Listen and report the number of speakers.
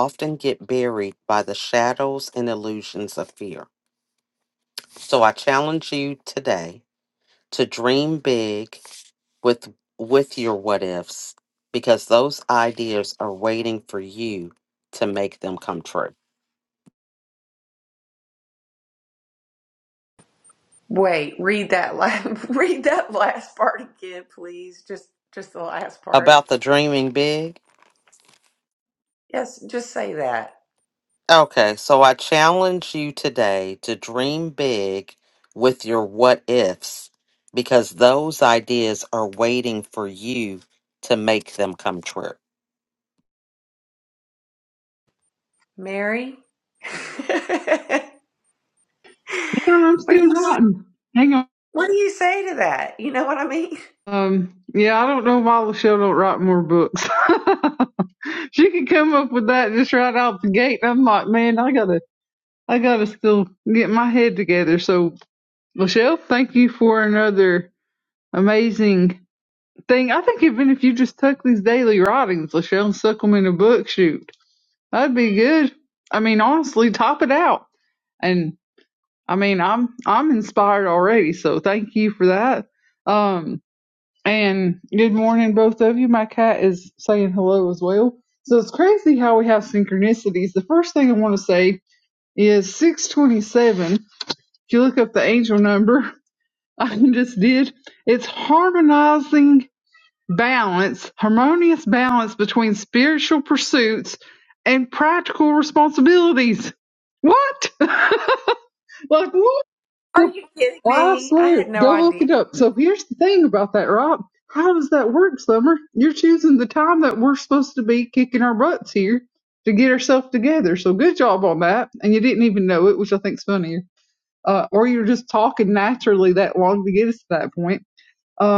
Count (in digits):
3